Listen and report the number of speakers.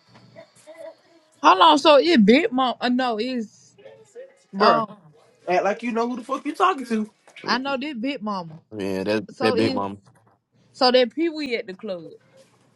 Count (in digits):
3